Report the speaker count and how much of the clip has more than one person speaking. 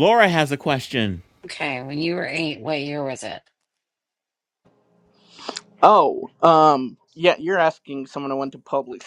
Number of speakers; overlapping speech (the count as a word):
three, no overlap